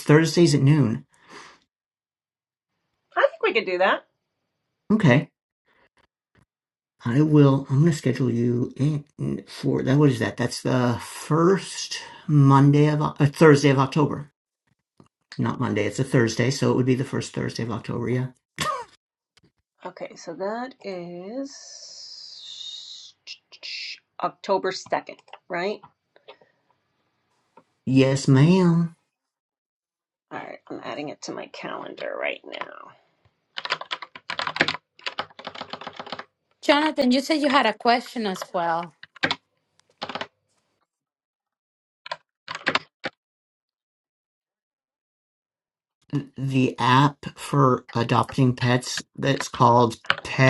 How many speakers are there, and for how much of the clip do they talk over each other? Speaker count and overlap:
three, no overlap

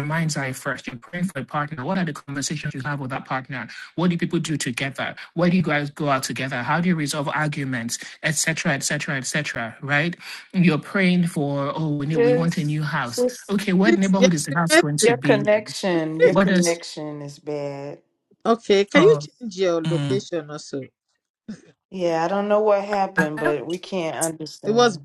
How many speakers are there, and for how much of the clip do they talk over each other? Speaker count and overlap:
three, about 16%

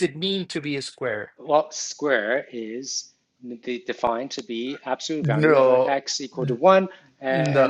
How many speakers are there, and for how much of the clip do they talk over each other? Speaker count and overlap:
two, about 16%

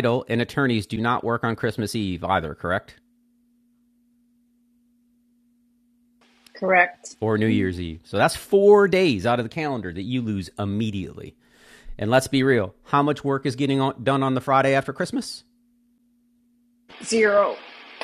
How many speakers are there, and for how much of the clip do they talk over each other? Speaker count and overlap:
two, no overlap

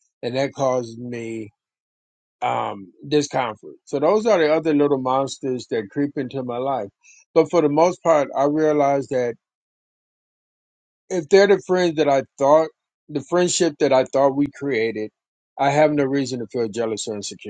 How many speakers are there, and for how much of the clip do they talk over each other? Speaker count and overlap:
one, no overlap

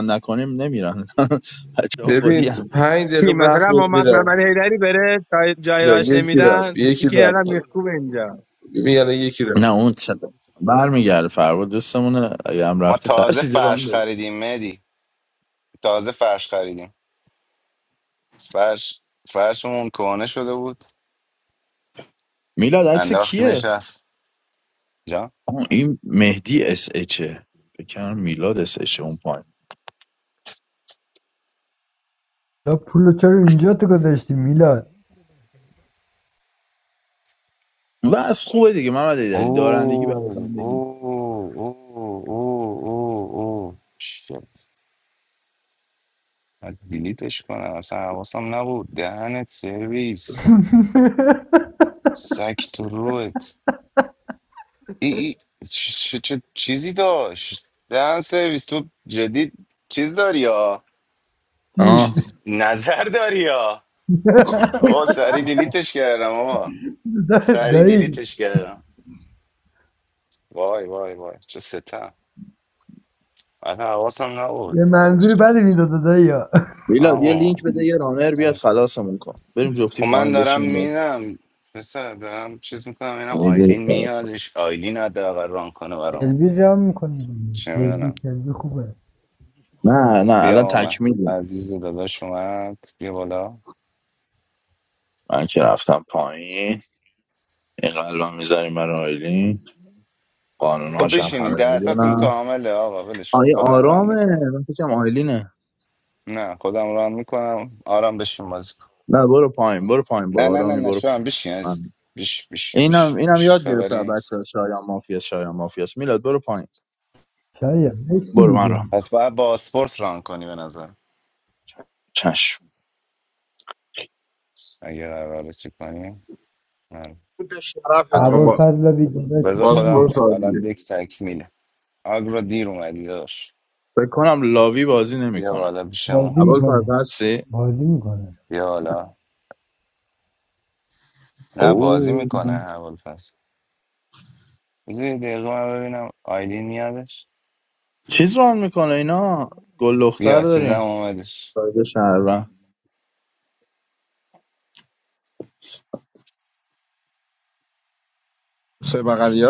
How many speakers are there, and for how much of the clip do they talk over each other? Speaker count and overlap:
six, about 13%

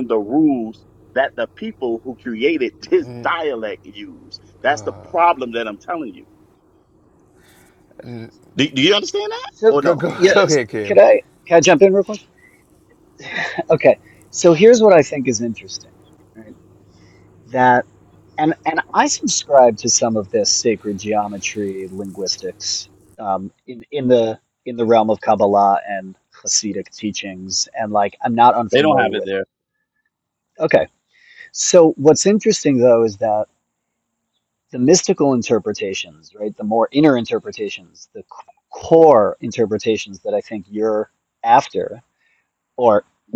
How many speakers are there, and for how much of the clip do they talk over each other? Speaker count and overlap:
three, about 3%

